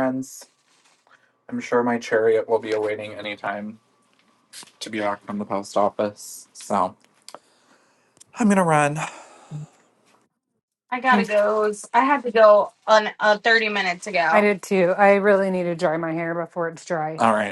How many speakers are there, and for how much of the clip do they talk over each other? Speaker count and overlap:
3, about 2%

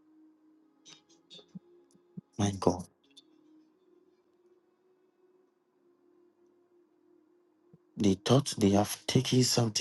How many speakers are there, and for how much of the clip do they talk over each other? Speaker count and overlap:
1, no overlap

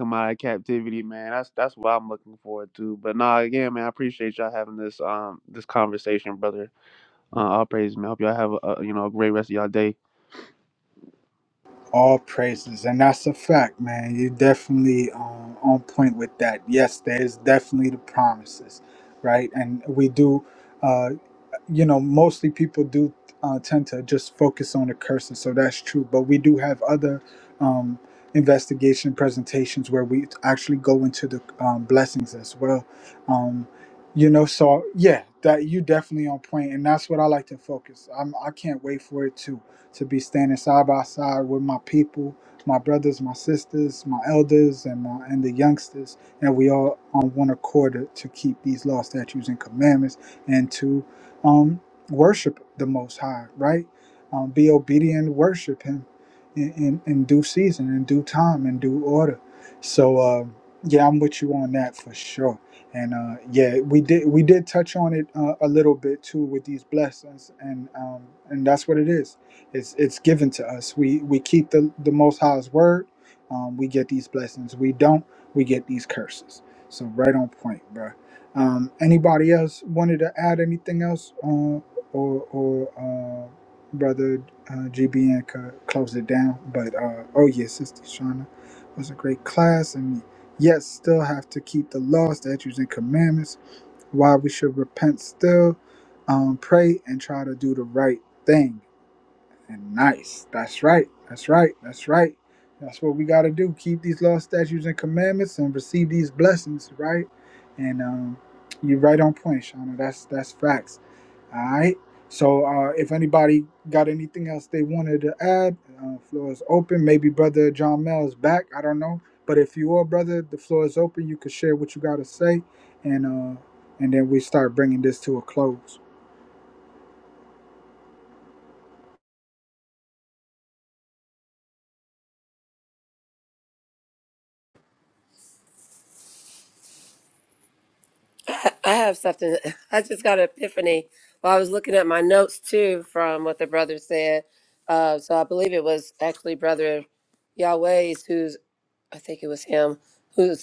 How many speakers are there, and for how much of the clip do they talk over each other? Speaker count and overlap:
3, no overlap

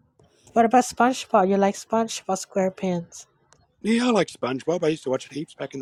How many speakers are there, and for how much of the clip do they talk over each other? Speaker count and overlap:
2, no overlap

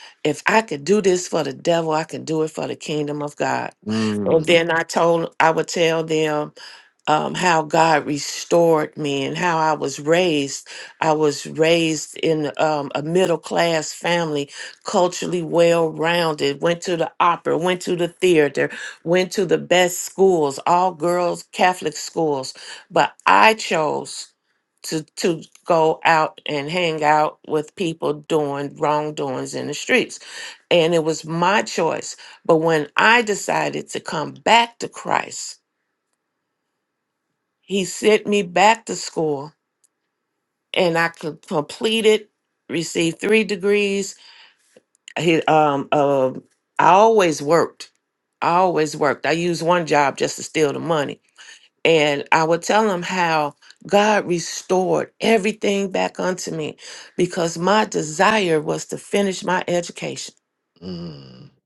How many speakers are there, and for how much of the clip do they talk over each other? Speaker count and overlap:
2, under 1%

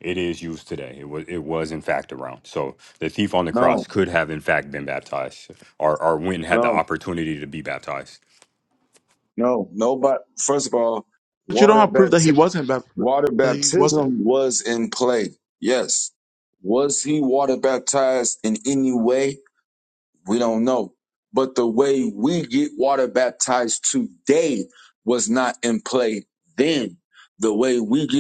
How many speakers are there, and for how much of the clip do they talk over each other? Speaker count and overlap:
3, about 8%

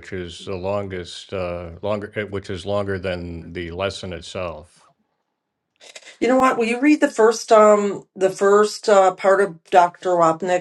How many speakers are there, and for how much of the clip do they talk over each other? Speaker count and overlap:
2, no overlap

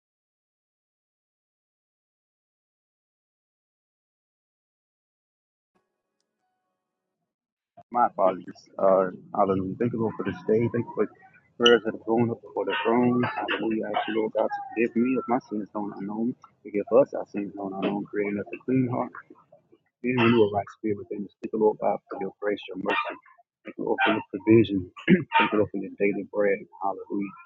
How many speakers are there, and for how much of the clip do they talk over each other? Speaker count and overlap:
1, no overlap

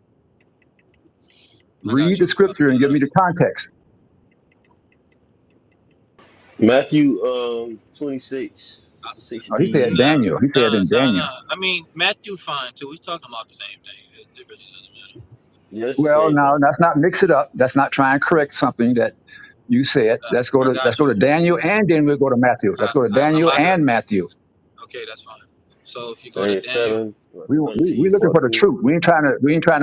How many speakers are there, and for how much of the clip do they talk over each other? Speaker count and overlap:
3, about 22%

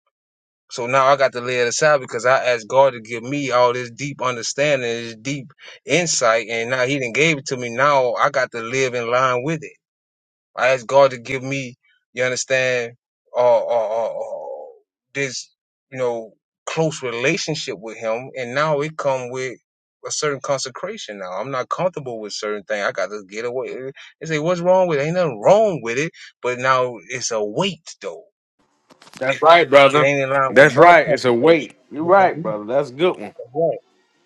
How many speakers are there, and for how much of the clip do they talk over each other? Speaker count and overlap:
2, about 4%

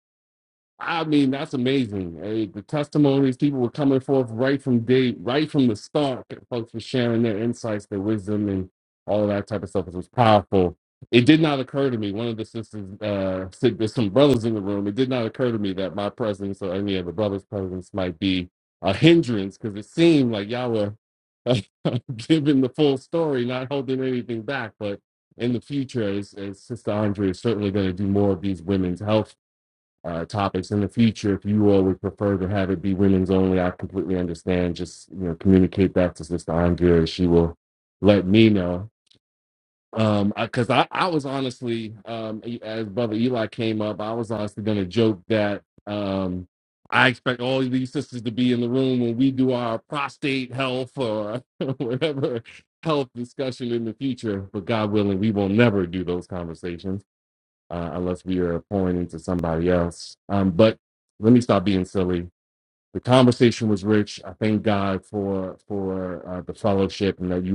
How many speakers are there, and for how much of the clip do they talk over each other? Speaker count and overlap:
1, no overlap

